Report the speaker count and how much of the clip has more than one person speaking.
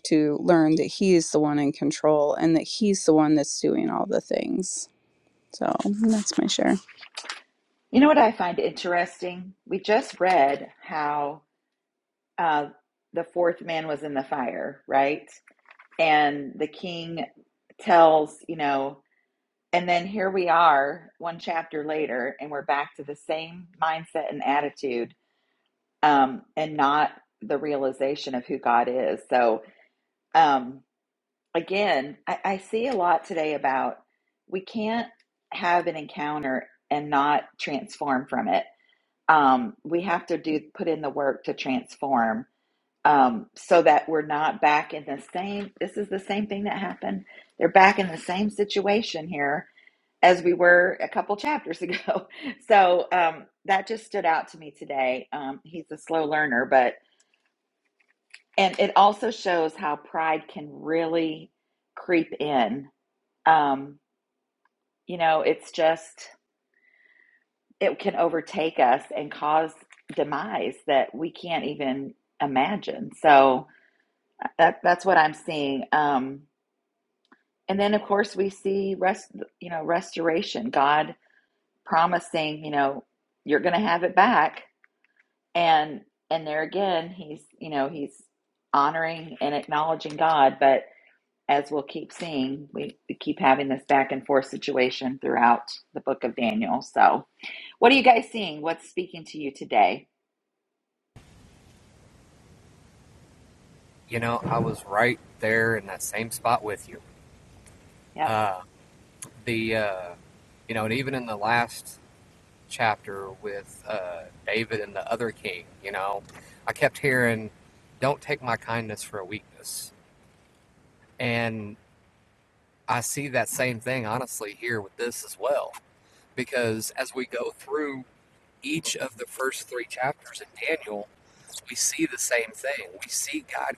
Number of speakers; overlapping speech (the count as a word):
three, under 1%